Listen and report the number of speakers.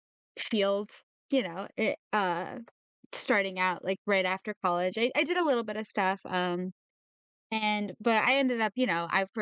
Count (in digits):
1